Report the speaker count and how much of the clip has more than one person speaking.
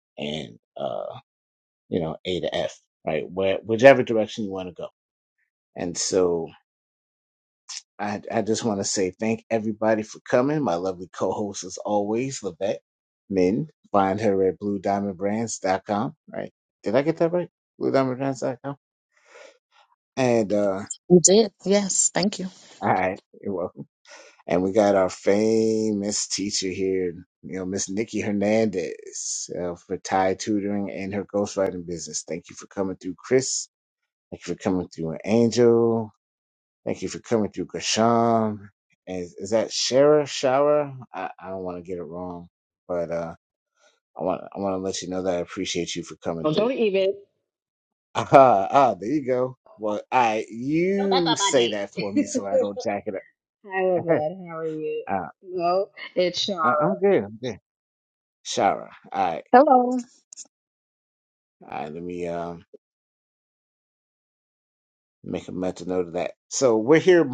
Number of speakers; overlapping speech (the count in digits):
3, about 2%